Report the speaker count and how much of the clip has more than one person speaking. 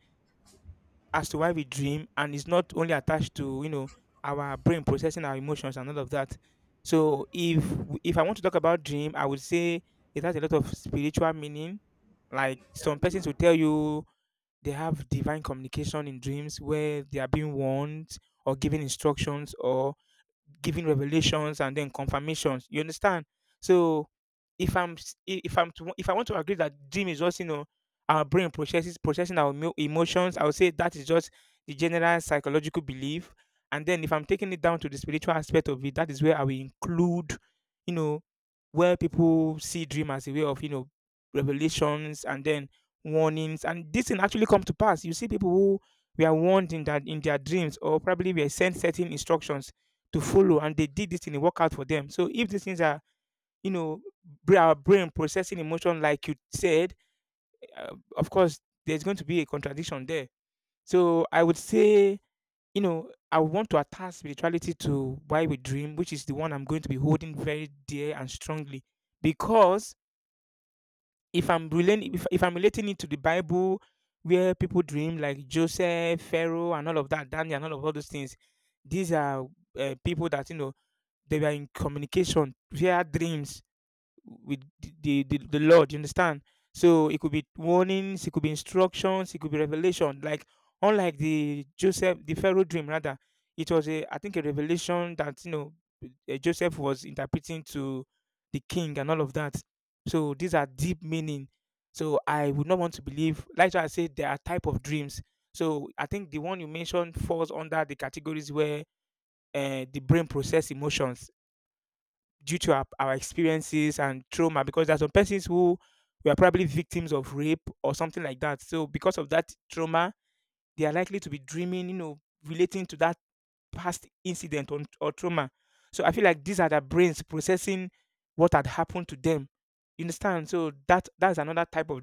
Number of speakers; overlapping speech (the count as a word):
one, no overlap